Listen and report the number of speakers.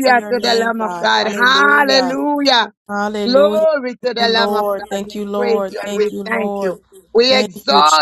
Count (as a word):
two